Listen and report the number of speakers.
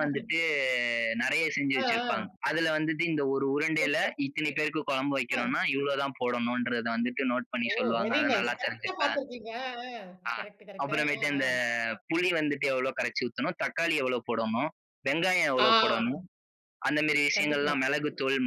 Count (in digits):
2